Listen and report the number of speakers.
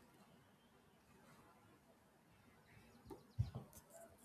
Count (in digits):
0